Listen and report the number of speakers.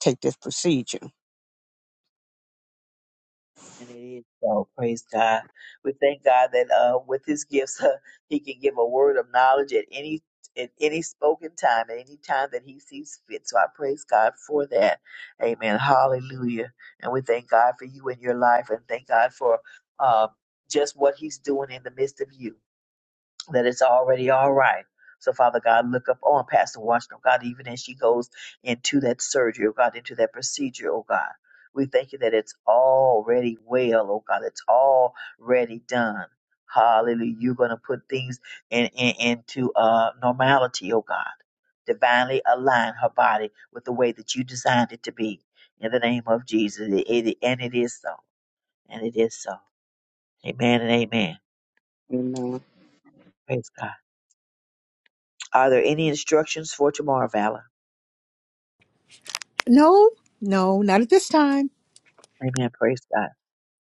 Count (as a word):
three